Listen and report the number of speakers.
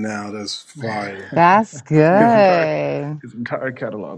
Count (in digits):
3